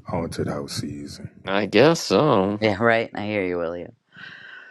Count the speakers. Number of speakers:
three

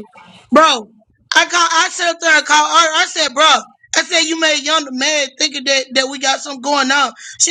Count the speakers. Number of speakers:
one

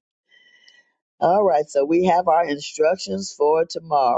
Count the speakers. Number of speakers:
one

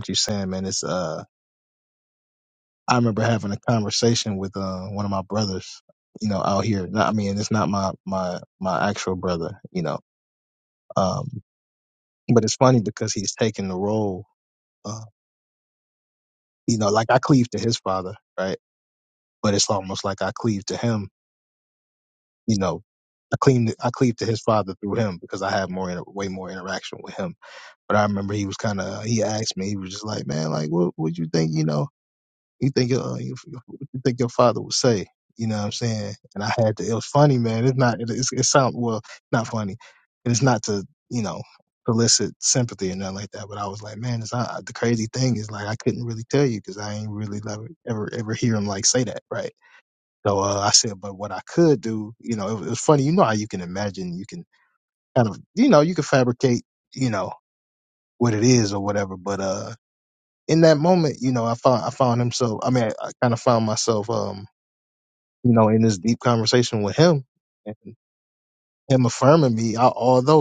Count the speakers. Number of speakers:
one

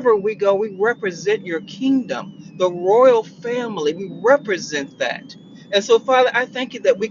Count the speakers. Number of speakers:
one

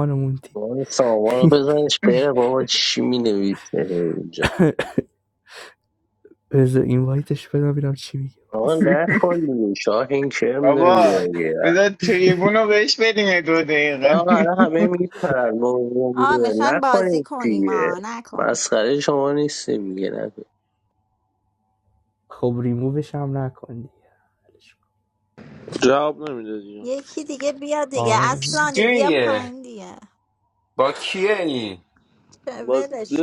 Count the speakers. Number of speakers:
six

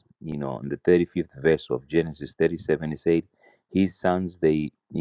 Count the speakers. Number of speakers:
one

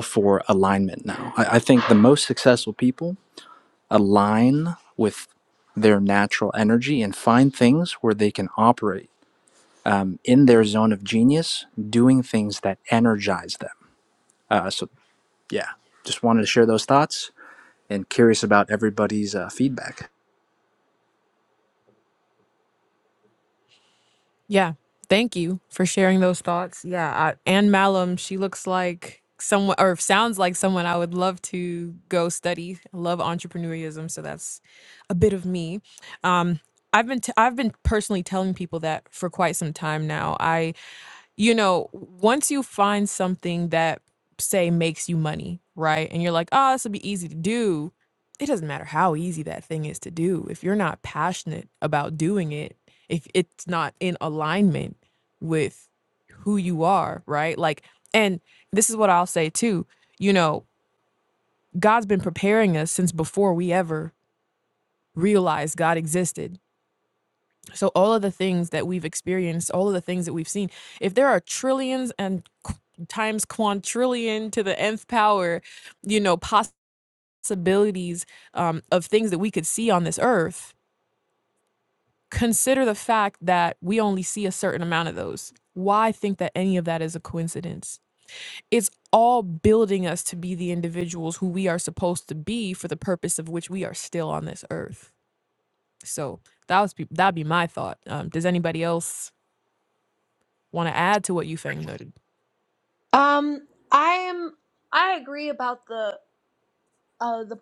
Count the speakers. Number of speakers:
three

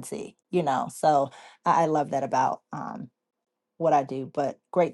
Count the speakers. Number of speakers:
one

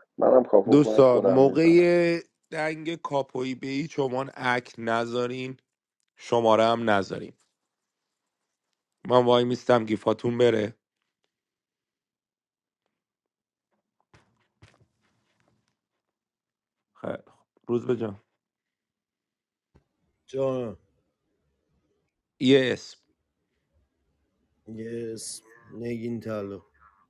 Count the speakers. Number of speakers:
three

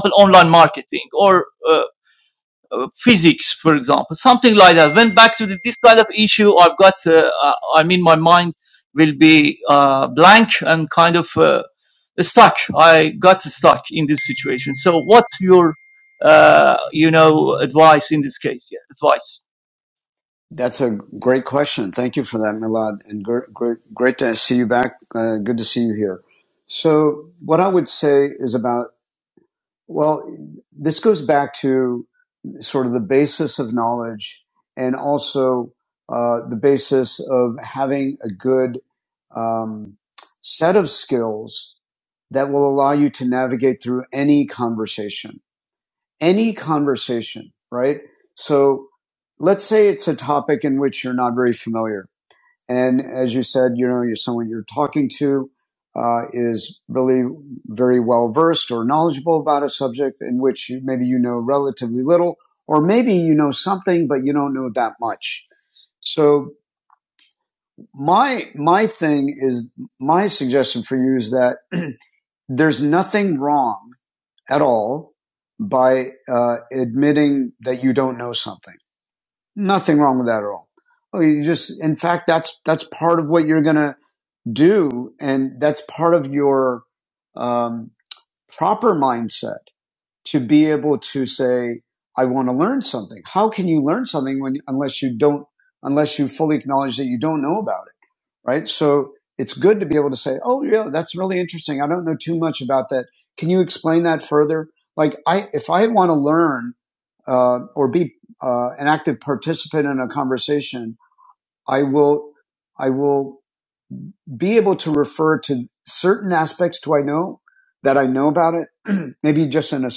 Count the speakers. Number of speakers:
two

